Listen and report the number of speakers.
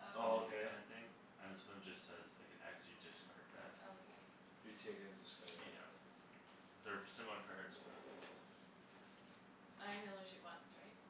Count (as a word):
three